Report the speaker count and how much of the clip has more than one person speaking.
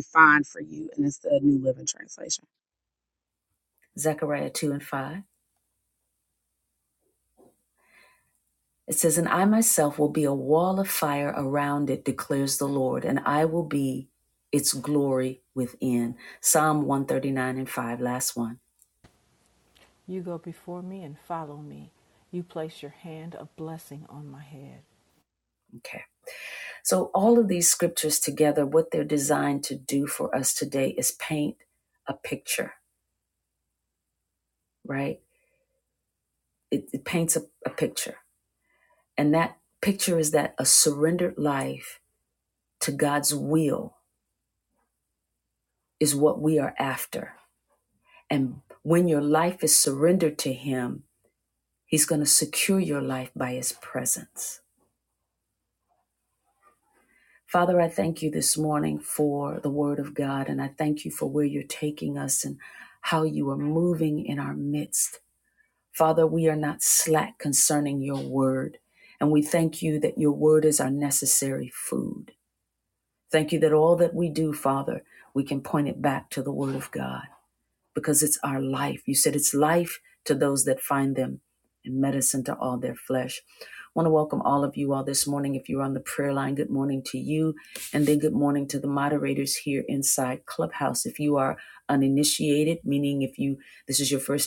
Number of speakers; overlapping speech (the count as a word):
three, no overlap